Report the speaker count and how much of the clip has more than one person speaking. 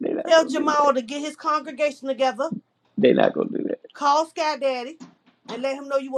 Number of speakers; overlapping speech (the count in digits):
2, about 11%